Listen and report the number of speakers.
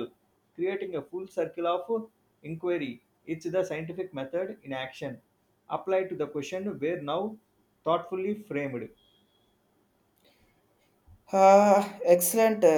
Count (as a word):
two